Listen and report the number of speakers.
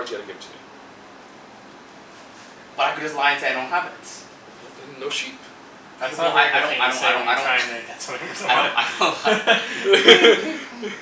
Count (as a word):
three